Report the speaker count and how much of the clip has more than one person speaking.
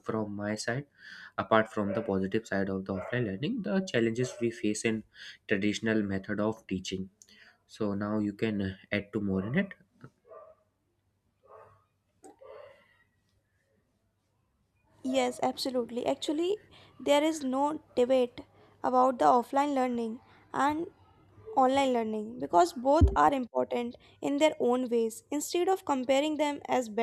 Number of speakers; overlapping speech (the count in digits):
2, no overlap